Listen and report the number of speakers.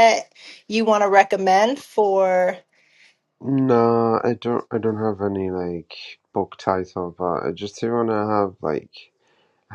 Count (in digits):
2